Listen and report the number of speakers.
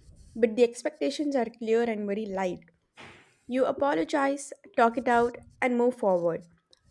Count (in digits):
1